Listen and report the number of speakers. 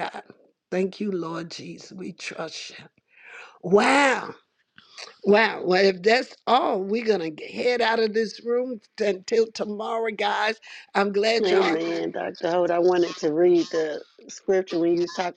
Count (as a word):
two